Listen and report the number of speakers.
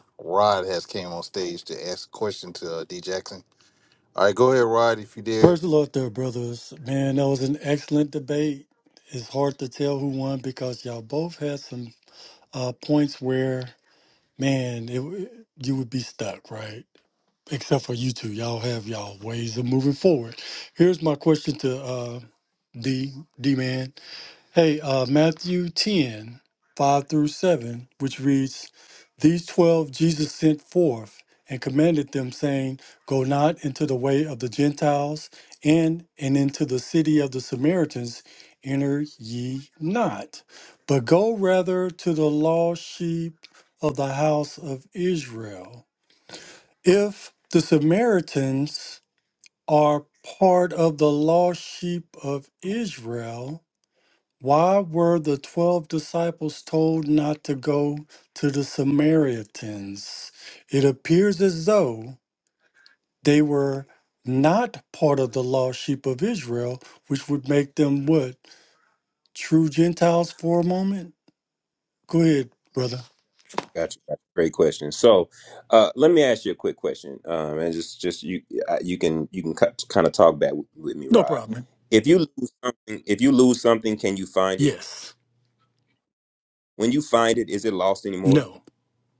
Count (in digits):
3